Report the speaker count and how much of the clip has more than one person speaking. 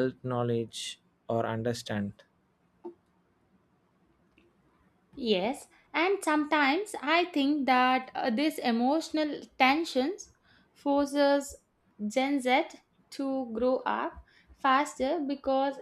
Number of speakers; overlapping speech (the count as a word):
two, no overlap